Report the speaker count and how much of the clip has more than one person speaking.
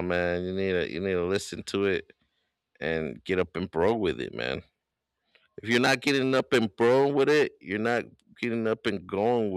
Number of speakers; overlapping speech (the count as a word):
one, no overlap